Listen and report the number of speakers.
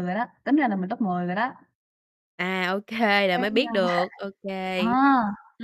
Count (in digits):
2